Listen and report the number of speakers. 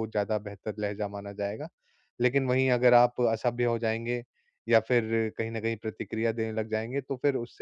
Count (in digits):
1